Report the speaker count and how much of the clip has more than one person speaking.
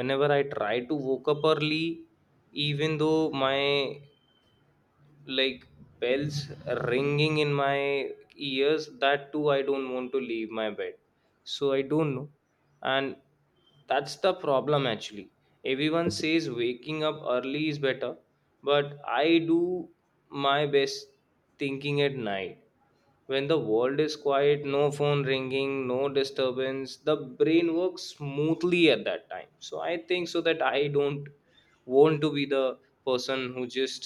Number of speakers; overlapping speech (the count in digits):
1, no overlap